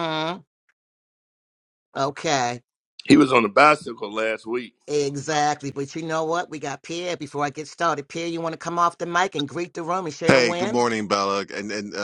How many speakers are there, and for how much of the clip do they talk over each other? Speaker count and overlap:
three, about 4%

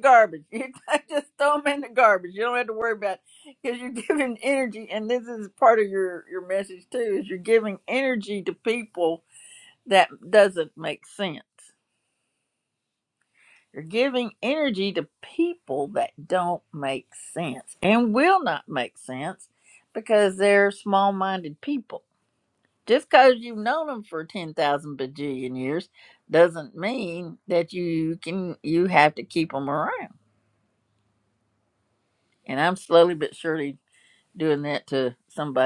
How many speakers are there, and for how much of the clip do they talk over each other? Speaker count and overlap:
one, no overlap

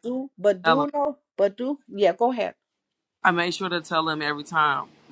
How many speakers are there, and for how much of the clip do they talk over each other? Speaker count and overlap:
two, about 4%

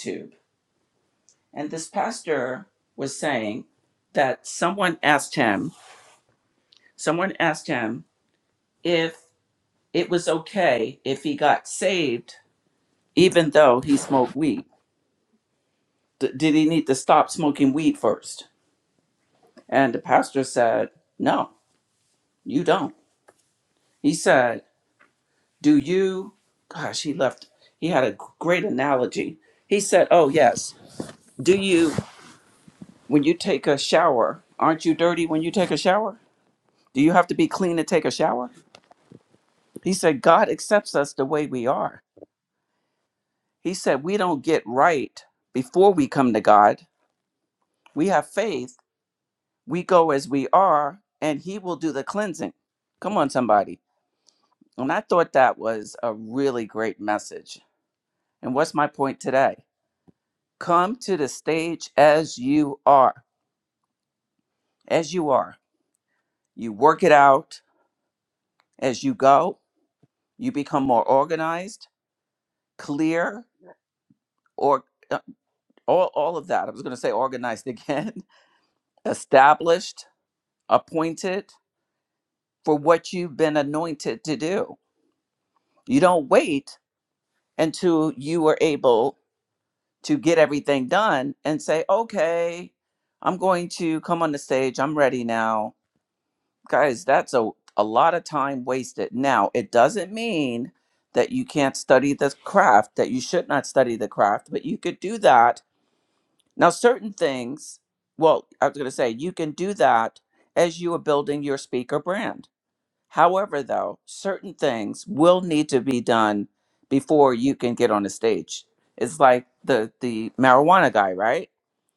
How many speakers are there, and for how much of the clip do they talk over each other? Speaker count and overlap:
one, no overlap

